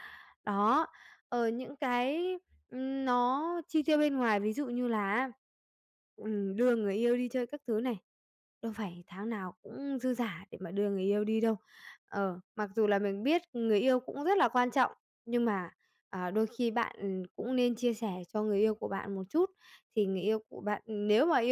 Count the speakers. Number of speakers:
one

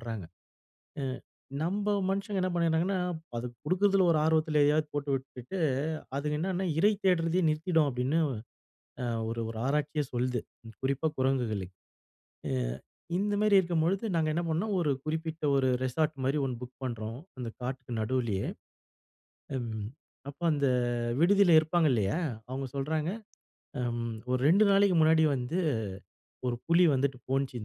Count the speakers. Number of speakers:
one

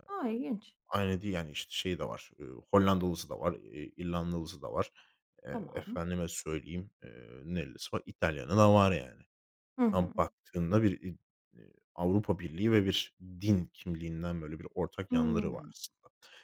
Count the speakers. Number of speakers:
two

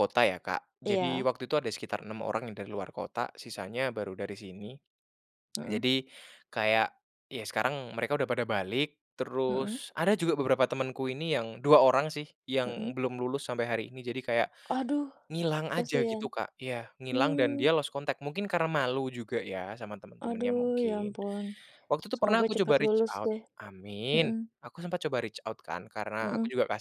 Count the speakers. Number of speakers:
two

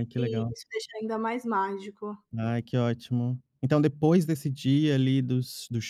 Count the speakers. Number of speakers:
two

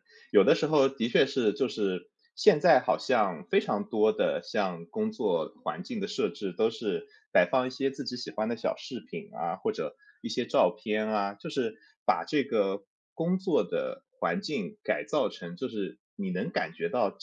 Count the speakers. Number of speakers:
one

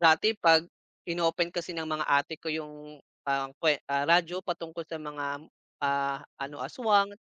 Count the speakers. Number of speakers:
one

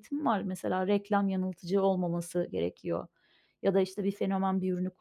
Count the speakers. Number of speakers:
one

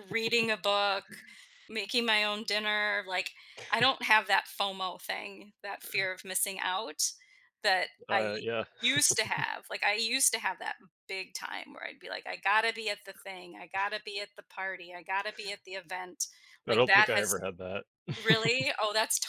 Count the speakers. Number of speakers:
two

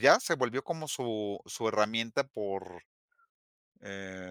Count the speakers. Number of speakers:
one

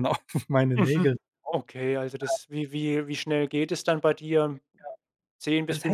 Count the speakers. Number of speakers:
two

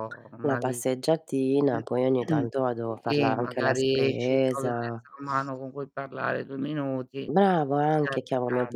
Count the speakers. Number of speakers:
two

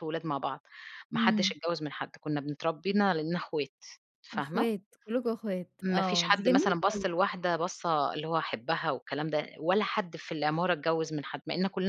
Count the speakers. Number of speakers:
two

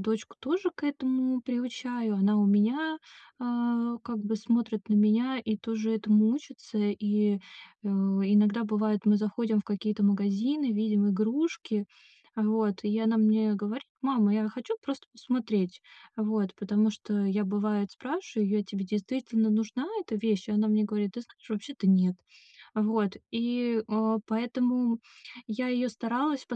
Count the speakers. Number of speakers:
one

